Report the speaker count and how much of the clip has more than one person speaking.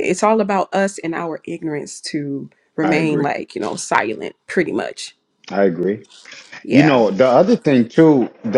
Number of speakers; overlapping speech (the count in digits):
2, about 9%